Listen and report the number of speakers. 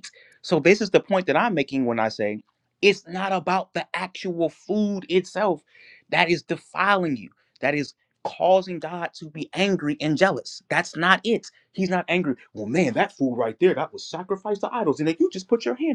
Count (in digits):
1